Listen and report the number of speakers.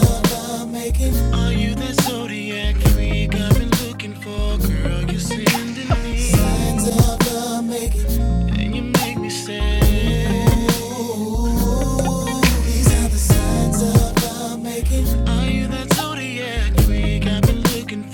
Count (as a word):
zero